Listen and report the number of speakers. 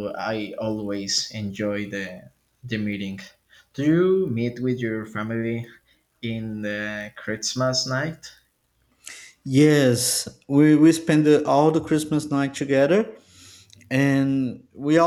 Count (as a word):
two